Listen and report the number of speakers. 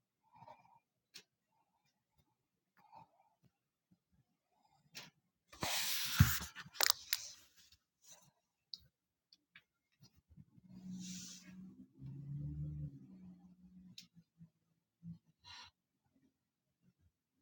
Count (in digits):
0